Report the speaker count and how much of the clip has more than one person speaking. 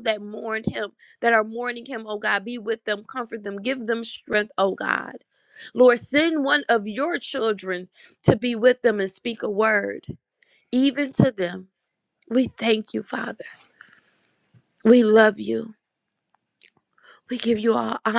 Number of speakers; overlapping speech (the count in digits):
1, no overlap